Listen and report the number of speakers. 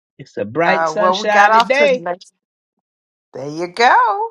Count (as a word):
two